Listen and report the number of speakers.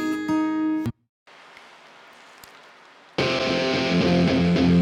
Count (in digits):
0